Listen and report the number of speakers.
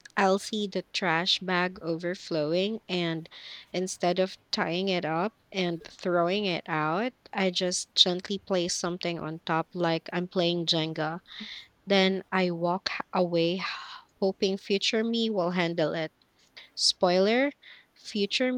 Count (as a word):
one